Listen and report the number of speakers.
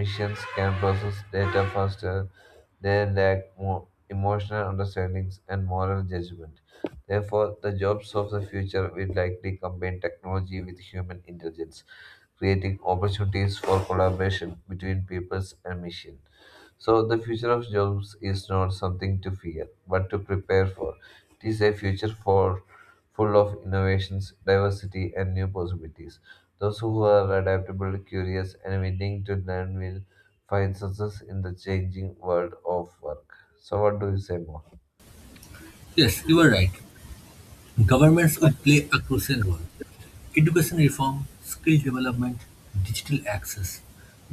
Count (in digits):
2